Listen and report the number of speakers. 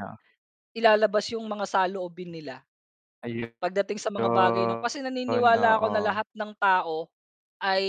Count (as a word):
two